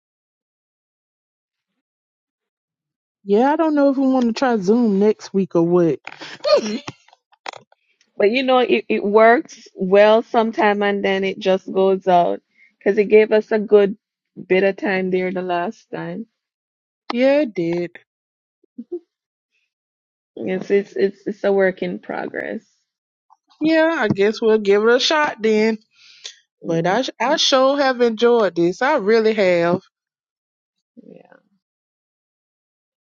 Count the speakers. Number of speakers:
2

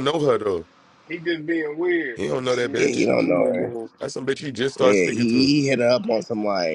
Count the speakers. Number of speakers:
3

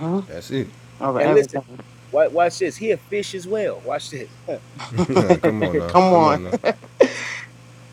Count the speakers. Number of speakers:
3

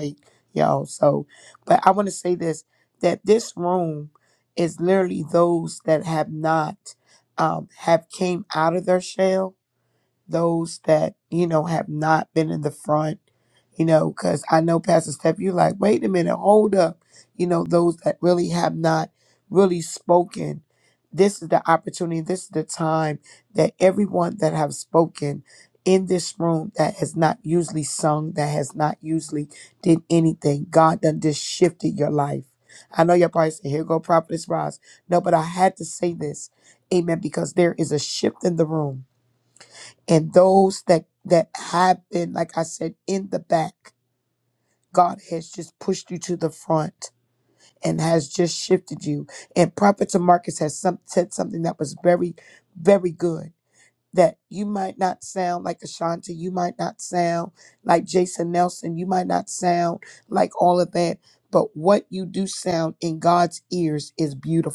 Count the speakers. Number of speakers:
1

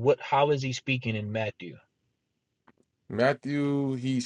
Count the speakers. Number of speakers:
2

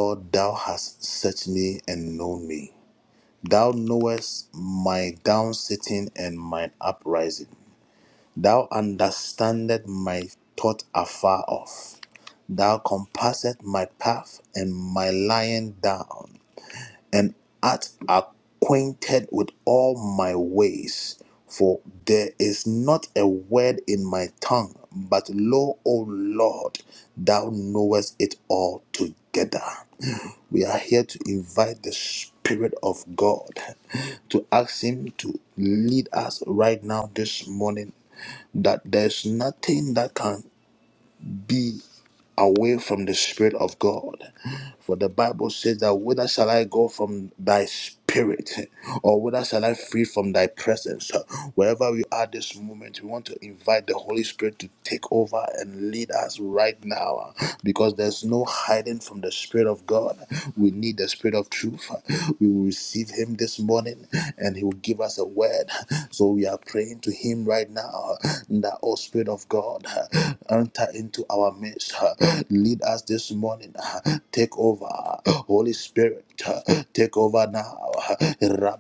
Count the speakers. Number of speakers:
1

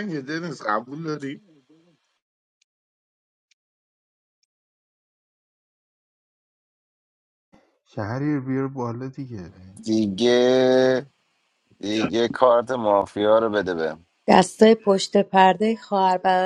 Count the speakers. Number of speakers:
4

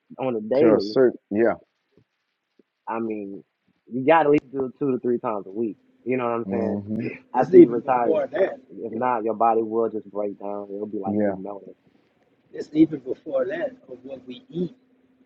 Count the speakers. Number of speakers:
3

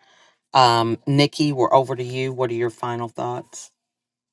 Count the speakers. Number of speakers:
1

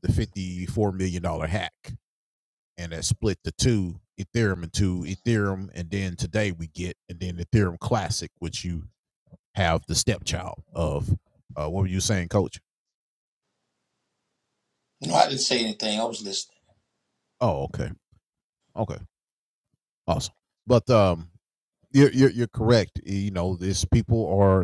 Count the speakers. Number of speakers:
2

